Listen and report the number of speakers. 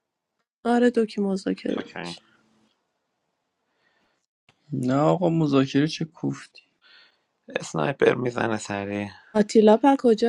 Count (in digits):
3